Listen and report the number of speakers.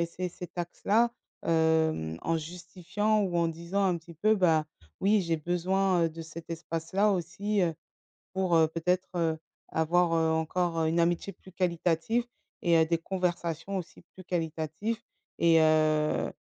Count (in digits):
1